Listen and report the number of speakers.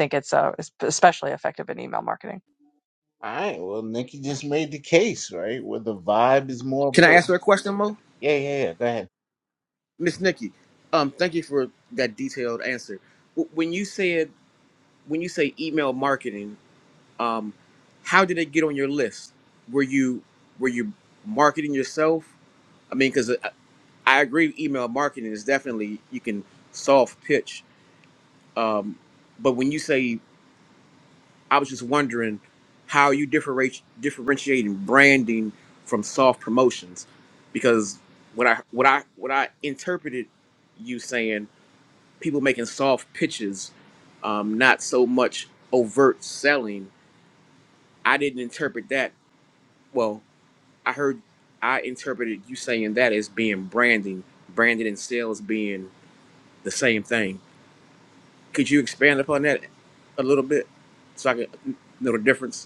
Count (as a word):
three